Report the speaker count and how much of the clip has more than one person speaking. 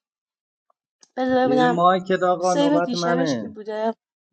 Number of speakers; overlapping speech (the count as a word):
two, about 29%